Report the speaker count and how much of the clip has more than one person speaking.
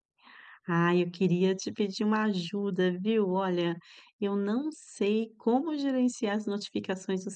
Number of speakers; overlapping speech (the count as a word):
one, no overlap